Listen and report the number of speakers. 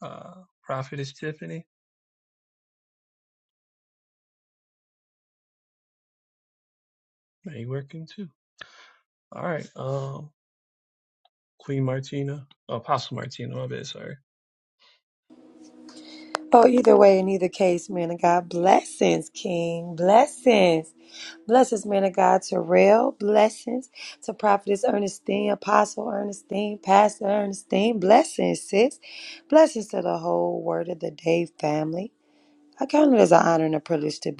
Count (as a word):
two